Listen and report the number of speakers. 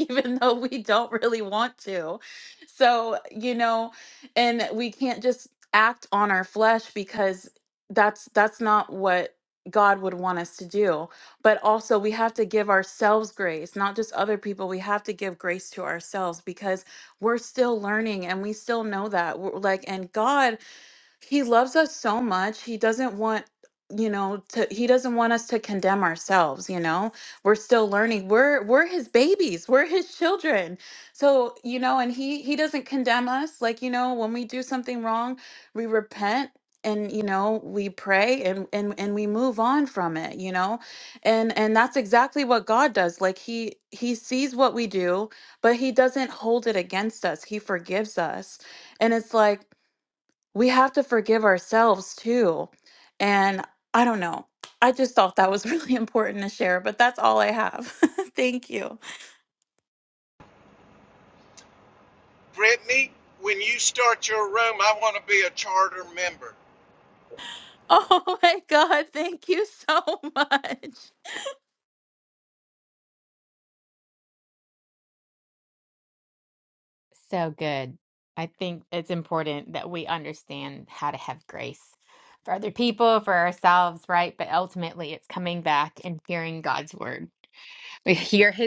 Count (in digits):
3